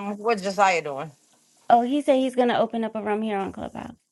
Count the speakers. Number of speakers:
2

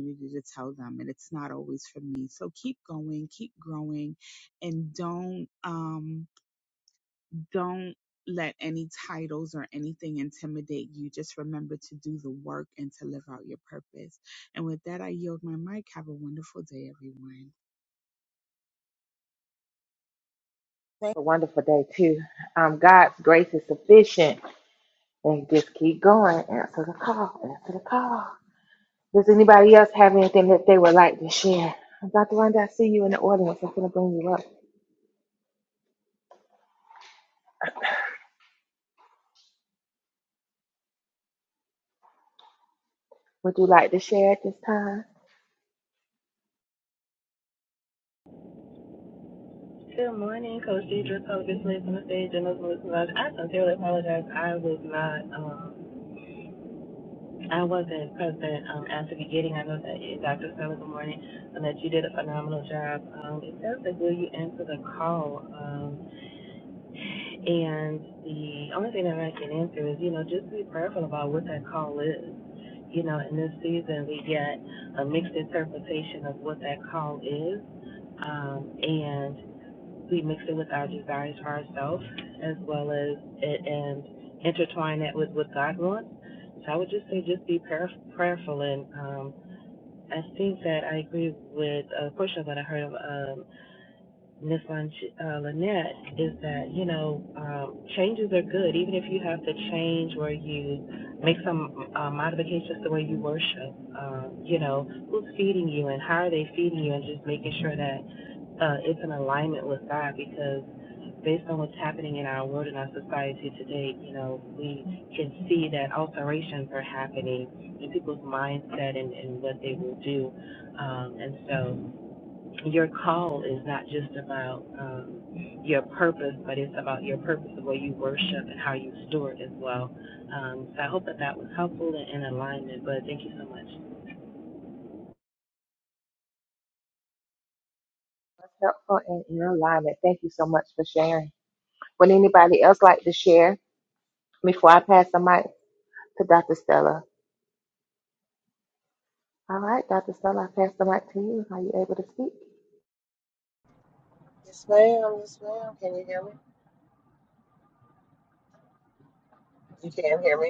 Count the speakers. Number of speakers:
4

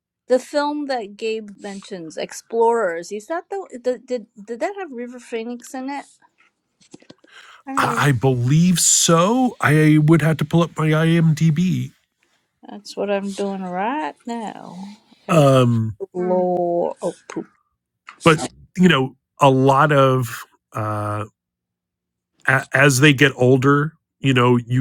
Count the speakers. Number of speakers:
2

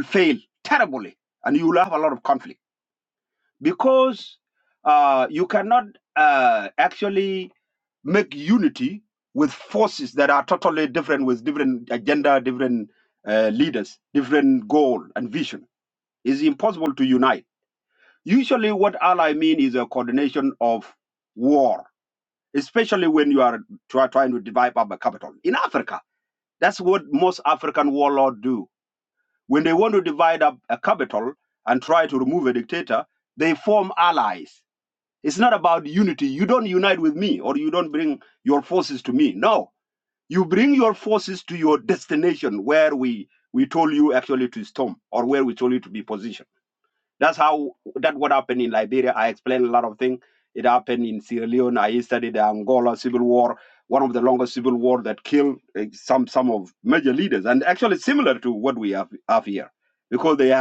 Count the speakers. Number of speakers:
1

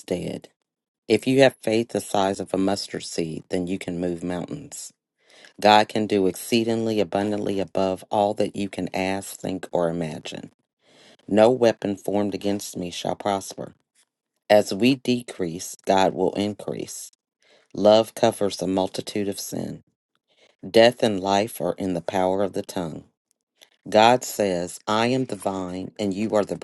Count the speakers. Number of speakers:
1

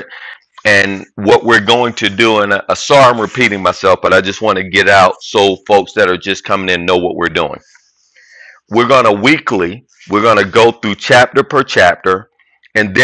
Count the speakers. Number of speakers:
1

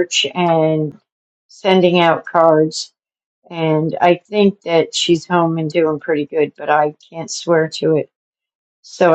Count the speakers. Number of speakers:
1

